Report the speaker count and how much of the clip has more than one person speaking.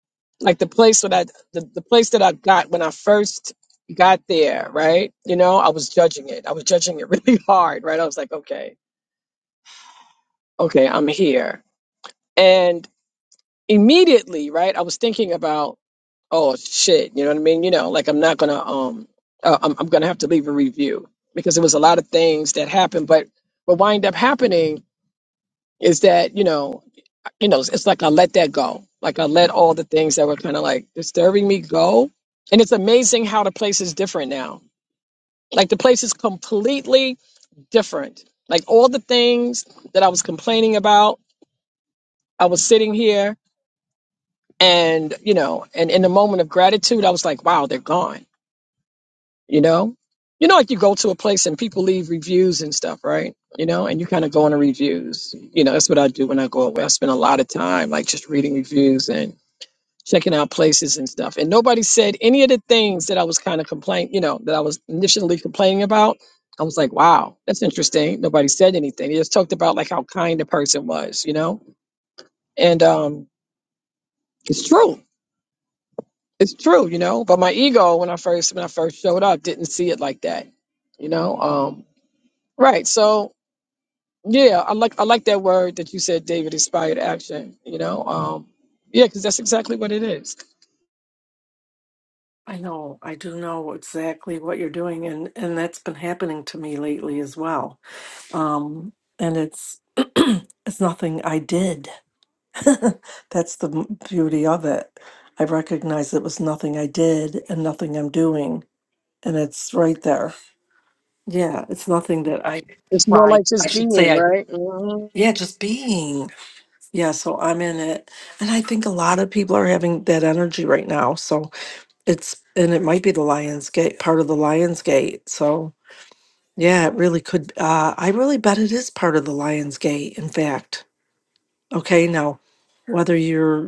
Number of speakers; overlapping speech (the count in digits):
2, about 1%